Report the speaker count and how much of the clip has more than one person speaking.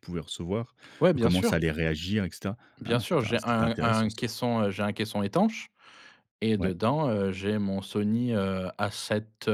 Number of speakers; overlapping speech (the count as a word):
two, about 21%